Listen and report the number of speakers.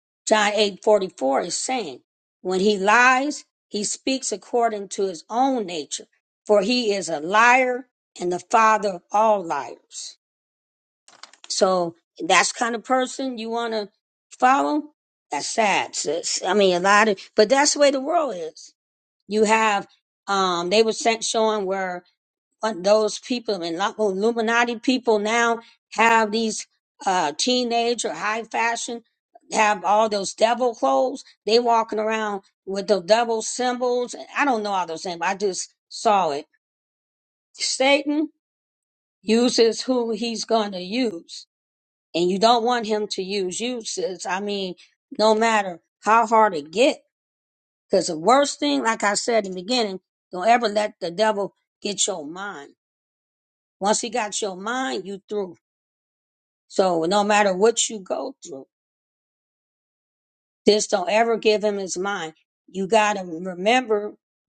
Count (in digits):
1